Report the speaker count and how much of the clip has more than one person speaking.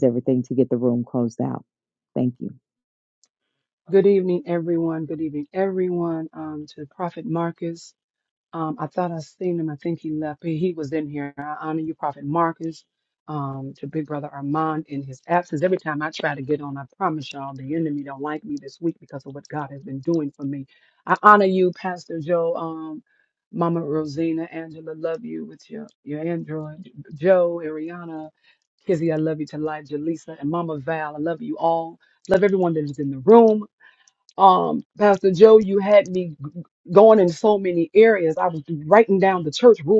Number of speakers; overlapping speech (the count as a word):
two, no overlap